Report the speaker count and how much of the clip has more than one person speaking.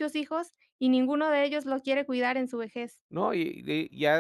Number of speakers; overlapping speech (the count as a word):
two, no overlap